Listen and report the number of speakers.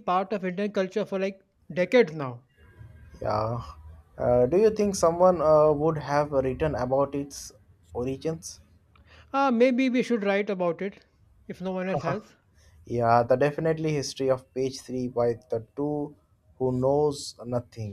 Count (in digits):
2